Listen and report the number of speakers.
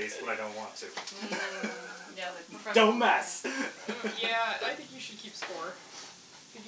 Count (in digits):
3